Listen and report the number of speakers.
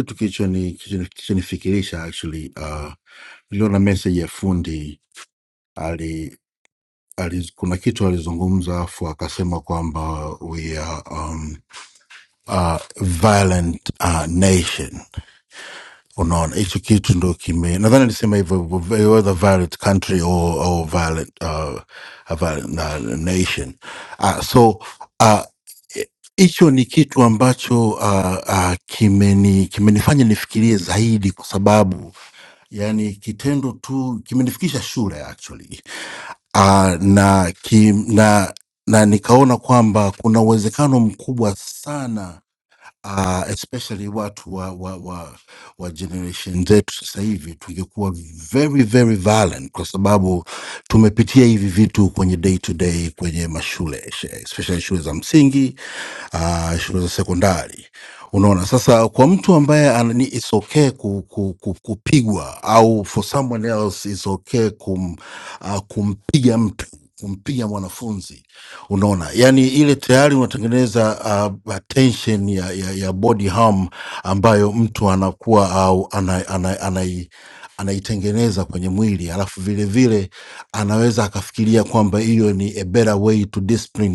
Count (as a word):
one